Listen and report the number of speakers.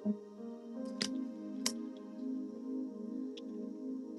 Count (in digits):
0